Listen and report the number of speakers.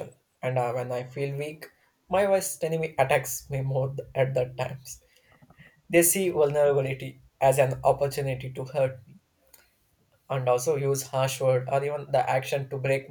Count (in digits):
1